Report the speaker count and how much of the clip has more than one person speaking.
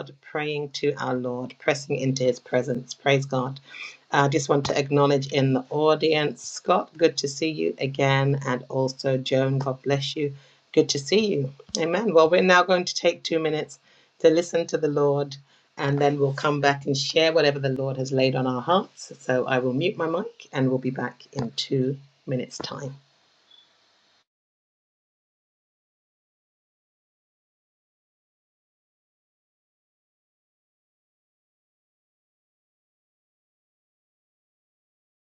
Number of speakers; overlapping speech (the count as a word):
one, no overlap